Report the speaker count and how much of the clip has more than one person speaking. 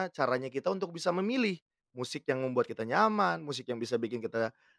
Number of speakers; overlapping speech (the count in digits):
1, no overlap